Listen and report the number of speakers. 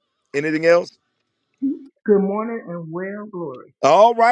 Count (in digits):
2